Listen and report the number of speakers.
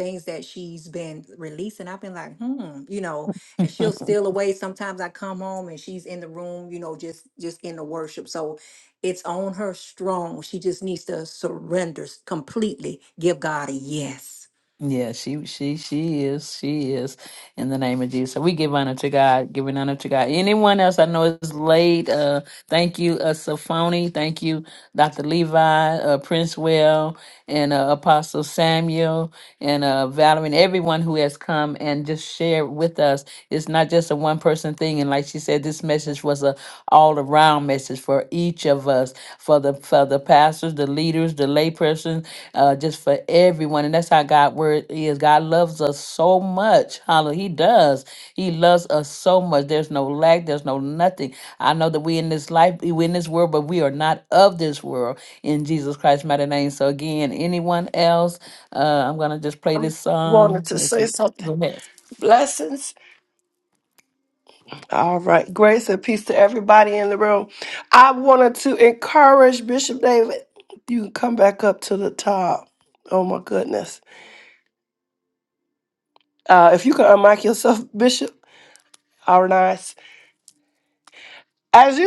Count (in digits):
3